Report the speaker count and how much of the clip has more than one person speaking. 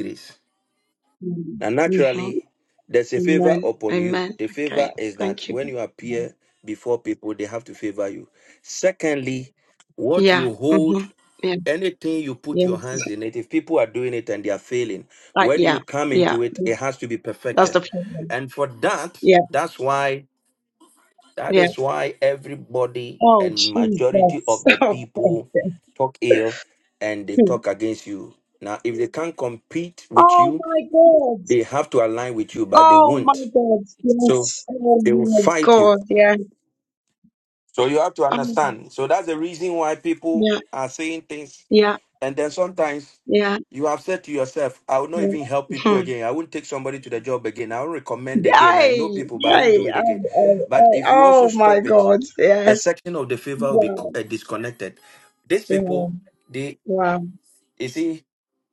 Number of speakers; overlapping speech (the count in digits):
2, about 24%